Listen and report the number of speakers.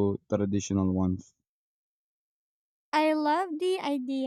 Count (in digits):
2